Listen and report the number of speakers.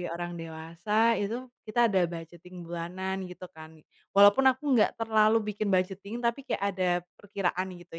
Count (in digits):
1